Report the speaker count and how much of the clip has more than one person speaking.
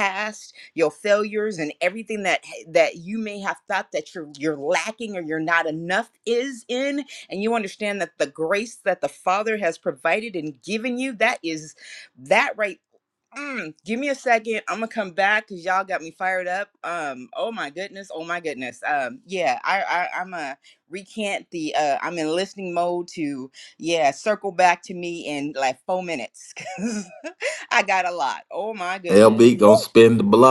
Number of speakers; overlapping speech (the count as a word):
two, about 1%